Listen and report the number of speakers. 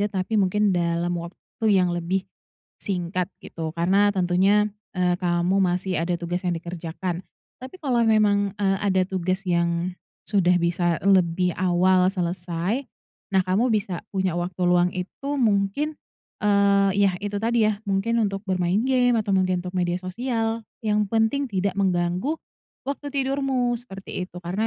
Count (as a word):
one